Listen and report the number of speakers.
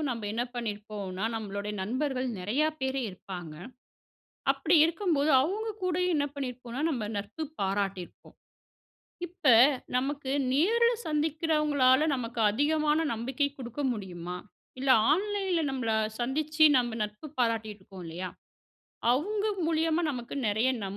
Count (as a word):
one